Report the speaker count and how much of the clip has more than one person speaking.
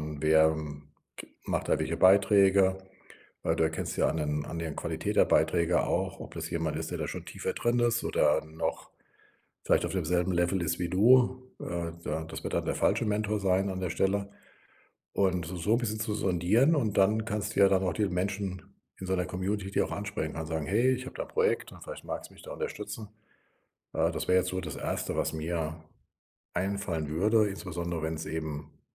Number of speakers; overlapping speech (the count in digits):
1, no overlap